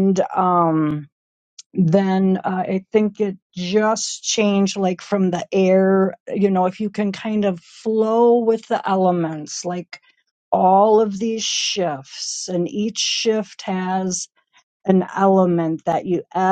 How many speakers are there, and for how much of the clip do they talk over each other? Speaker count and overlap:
one, no overlap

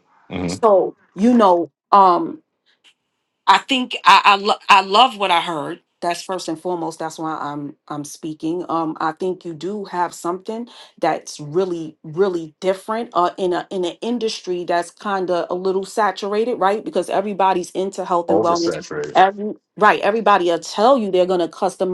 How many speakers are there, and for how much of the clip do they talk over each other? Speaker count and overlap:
two, about 3%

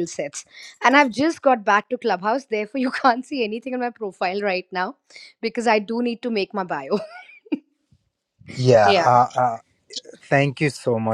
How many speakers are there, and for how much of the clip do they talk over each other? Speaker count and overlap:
two, about 2%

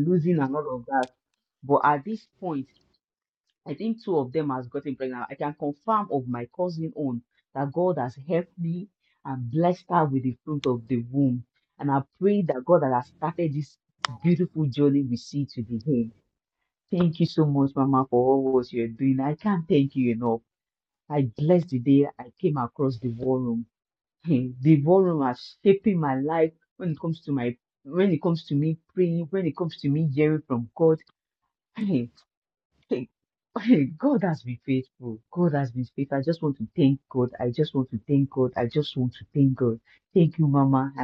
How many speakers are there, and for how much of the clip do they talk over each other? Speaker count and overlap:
one, no overlap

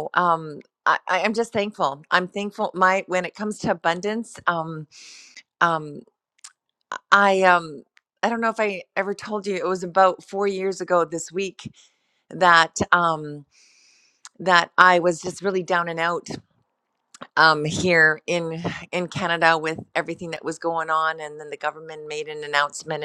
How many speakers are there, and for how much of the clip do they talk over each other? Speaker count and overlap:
one, no overlap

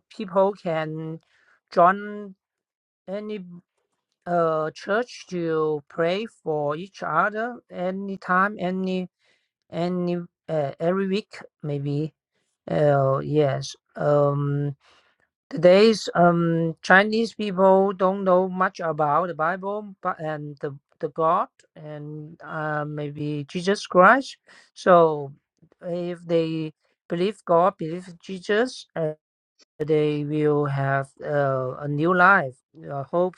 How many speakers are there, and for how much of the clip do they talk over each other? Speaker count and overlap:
one, no overlap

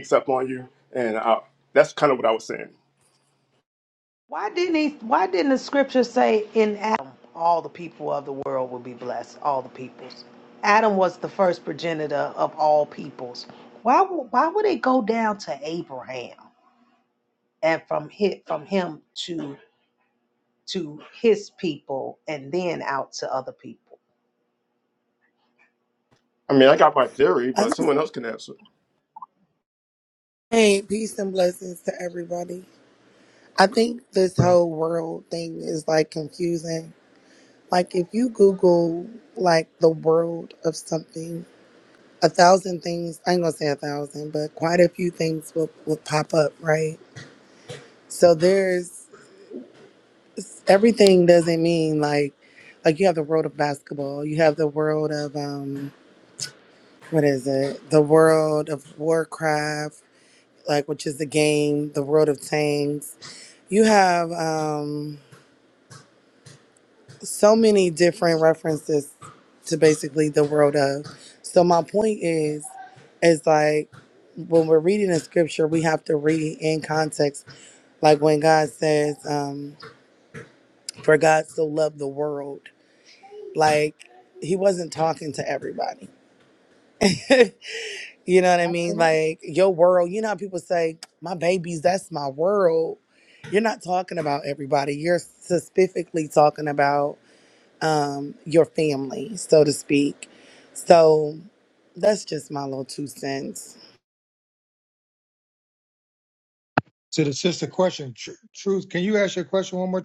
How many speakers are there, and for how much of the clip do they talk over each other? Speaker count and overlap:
four, under 1%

